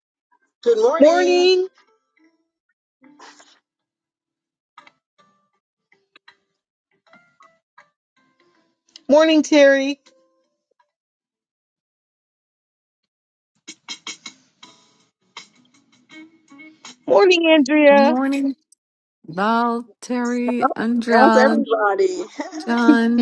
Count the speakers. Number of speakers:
three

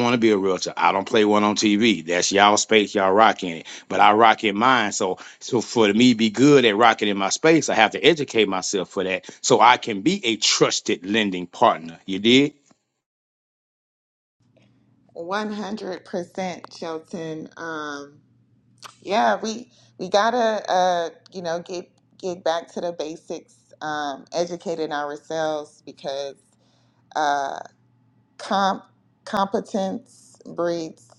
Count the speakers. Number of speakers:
two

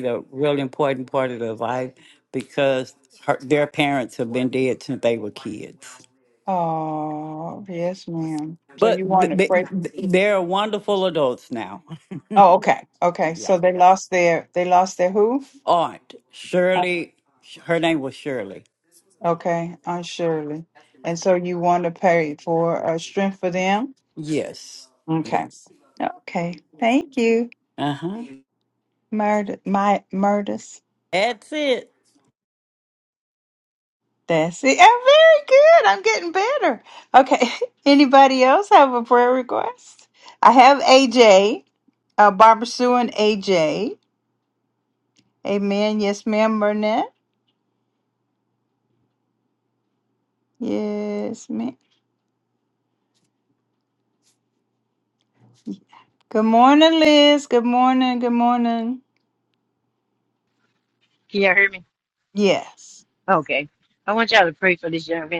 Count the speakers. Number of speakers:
three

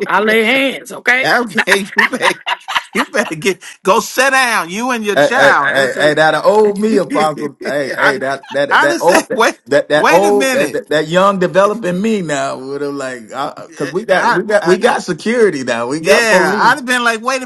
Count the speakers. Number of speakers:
three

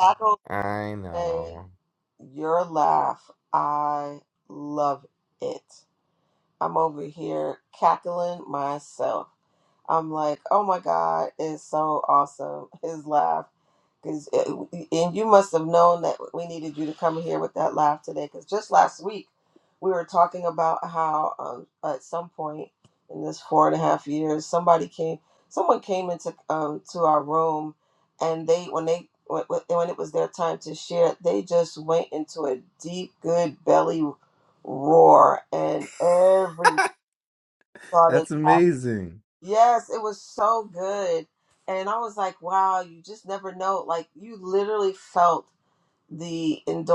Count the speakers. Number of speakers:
two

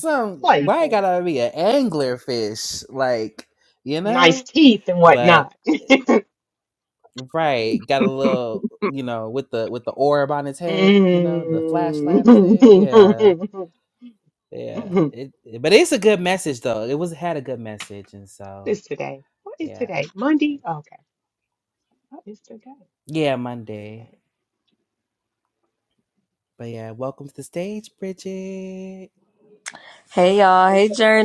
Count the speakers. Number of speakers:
three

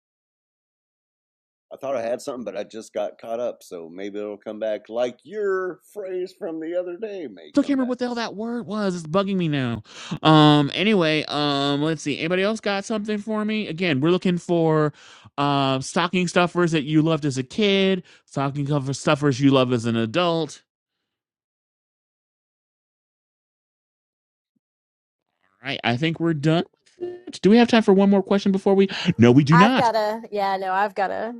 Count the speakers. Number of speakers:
three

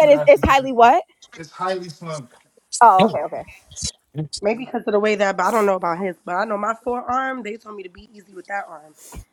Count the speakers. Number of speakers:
three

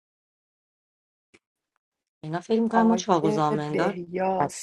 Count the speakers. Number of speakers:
two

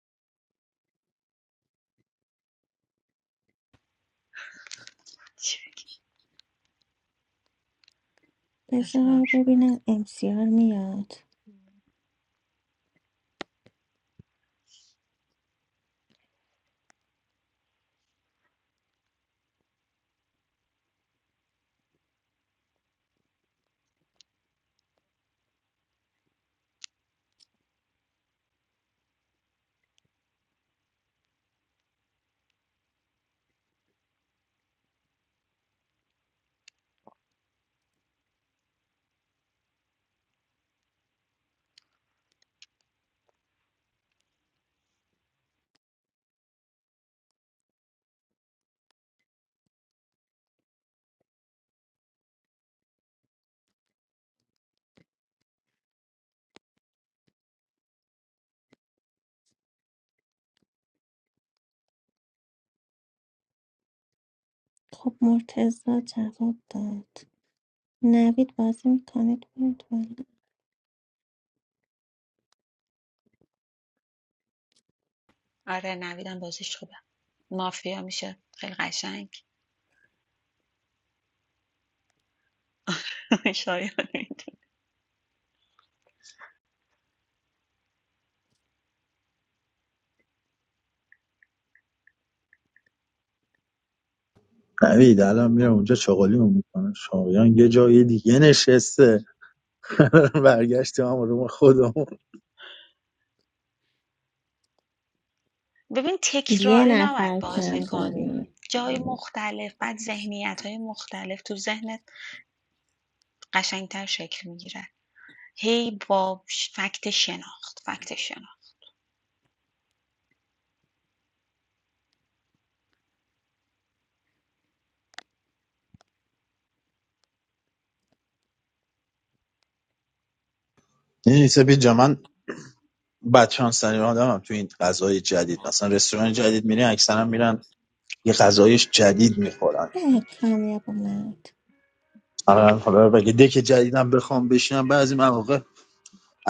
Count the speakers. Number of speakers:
three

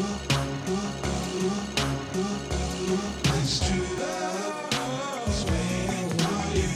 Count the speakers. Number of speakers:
zero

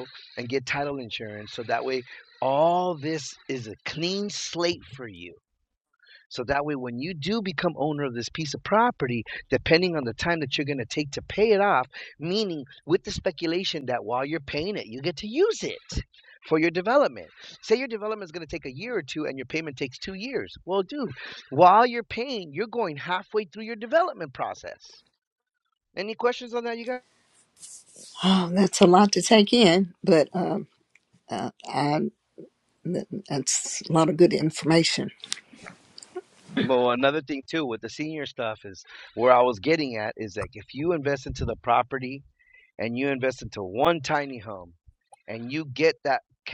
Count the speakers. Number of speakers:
two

